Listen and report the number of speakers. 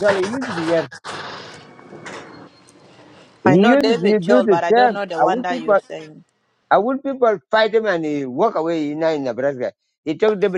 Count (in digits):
2